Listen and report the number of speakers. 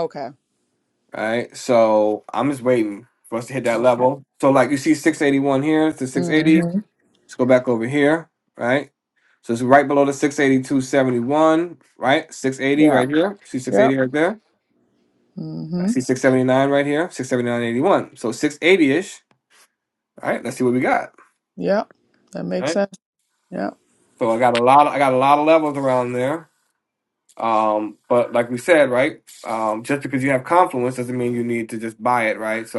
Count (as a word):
two